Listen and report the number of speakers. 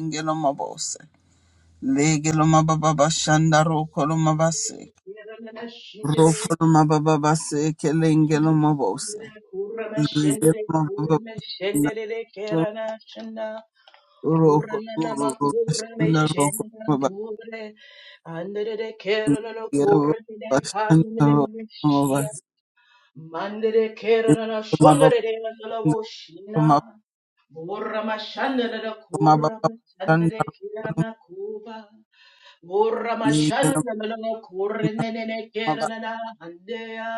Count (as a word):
two